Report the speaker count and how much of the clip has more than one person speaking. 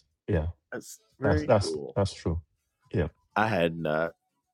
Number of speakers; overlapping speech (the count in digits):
2, about 15%